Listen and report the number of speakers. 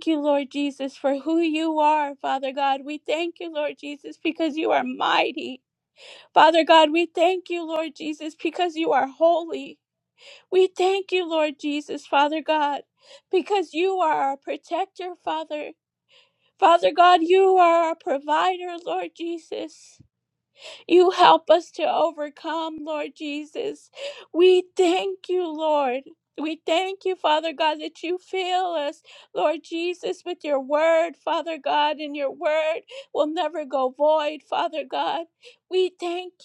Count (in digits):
1